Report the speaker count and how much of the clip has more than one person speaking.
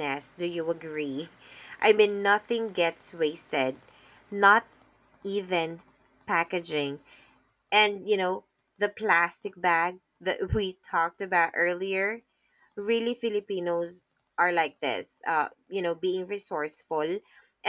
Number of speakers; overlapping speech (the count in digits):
1, no overlap